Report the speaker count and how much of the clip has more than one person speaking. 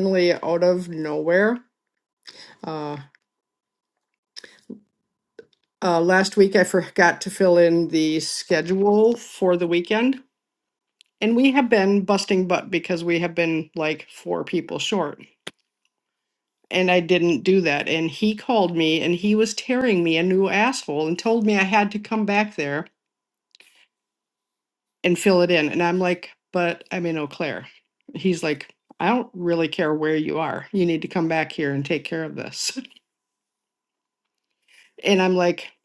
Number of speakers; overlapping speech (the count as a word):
one, no overlap